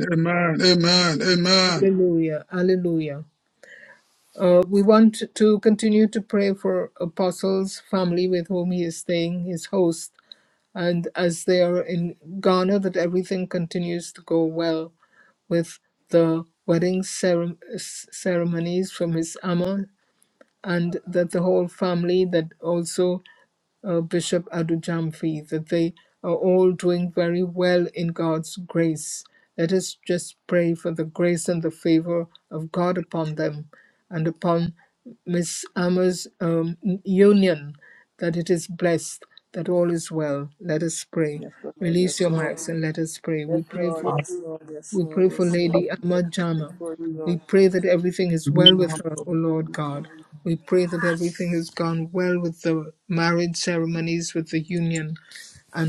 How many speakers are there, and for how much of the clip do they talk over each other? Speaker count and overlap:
three, about 6%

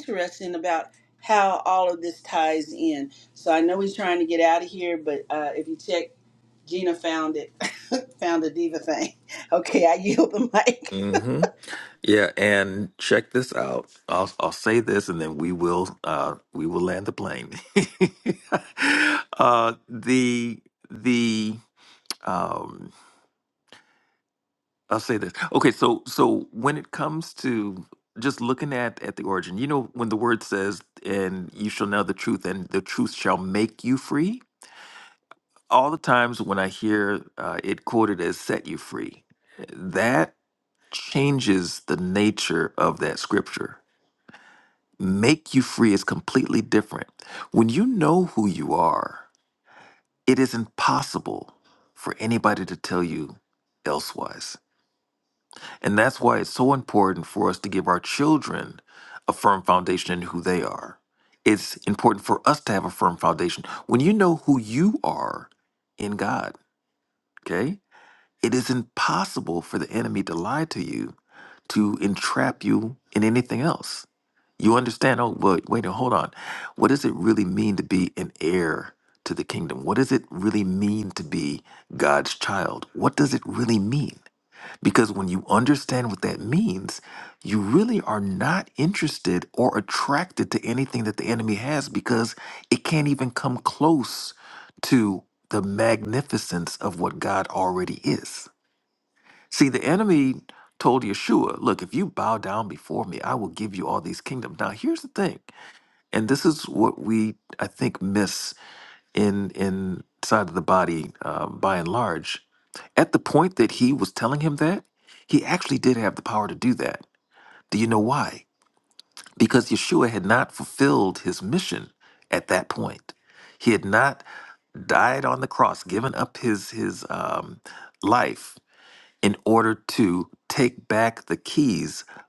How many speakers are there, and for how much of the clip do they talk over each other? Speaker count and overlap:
two, no overlap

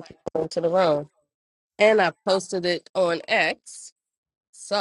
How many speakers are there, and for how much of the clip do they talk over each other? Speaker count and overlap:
one, no overlap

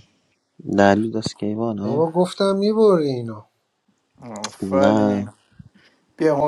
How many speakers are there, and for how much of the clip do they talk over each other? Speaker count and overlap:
three, about 12%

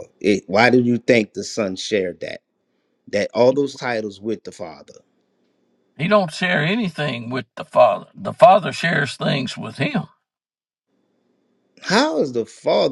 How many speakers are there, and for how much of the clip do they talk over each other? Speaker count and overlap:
two, no overlap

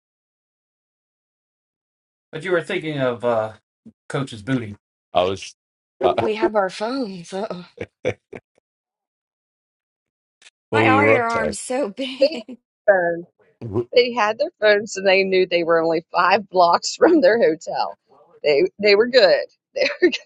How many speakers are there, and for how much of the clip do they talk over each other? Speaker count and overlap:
four, about 6%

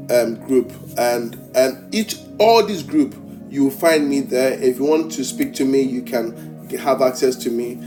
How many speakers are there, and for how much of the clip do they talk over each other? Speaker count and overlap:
one, no overlap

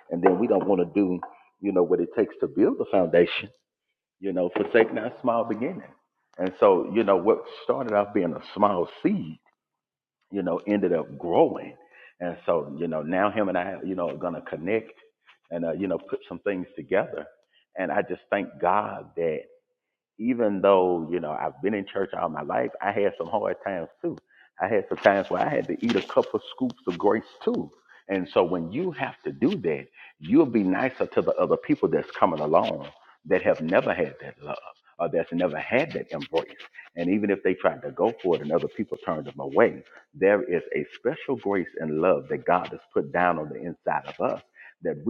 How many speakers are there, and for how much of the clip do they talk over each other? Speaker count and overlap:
one, no overlap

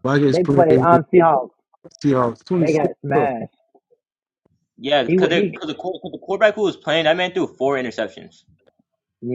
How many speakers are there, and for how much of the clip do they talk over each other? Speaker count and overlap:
three, about 16%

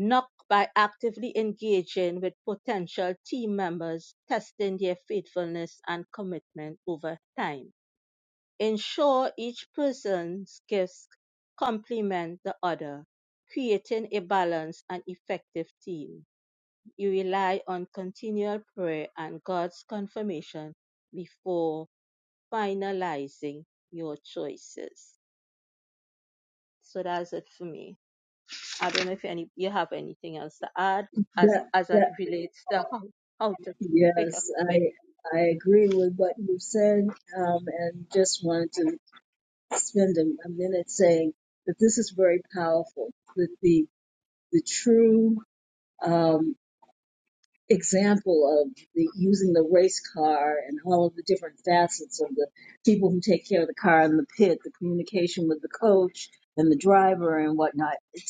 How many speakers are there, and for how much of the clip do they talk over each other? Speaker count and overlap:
two, about 2%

